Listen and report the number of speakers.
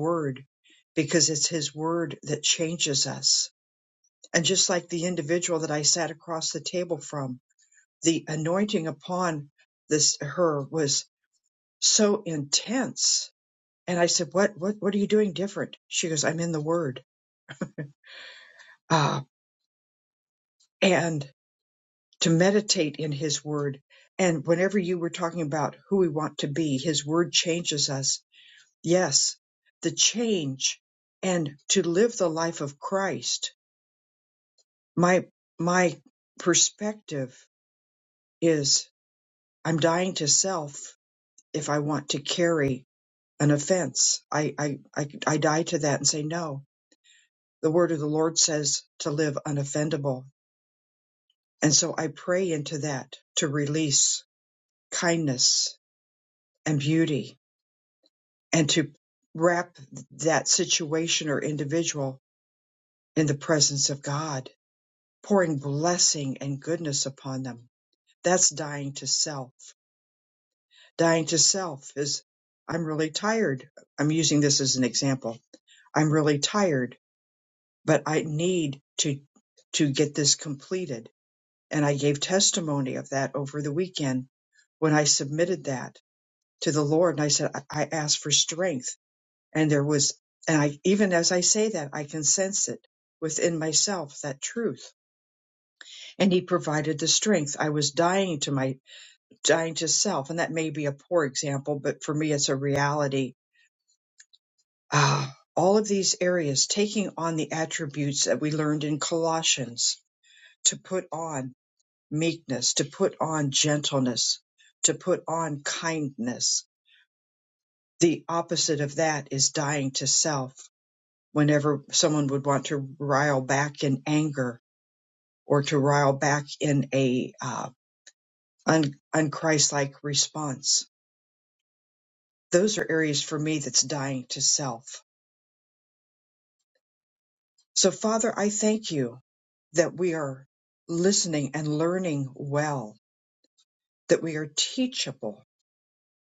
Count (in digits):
1